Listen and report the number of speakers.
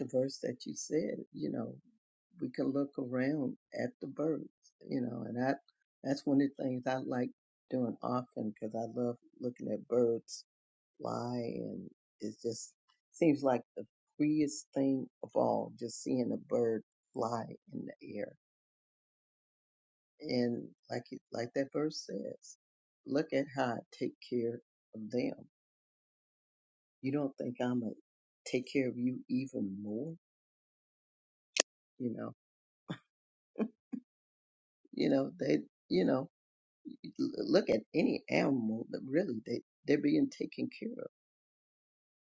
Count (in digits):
1